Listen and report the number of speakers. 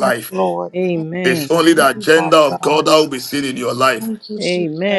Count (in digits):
3